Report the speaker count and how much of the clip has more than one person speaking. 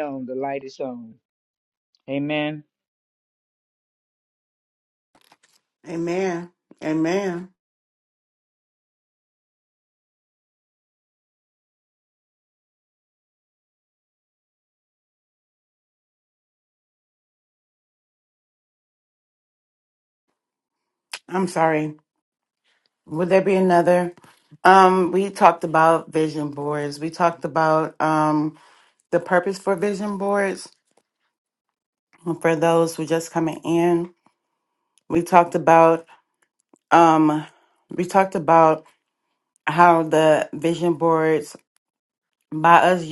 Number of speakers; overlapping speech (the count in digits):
2, no overlap